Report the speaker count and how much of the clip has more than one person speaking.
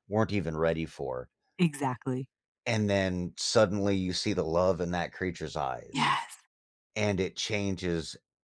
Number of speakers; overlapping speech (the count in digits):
2, about 1%